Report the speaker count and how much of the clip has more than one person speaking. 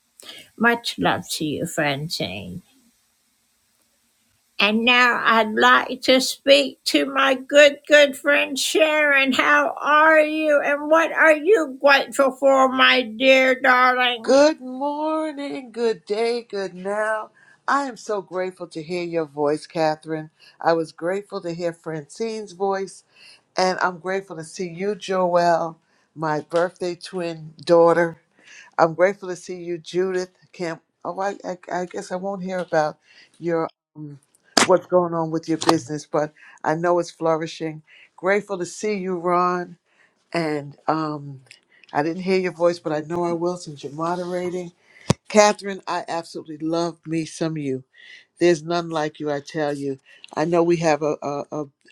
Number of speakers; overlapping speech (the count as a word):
two, under 1%